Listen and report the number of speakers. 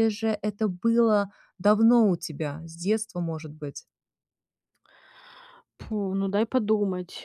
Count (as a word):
two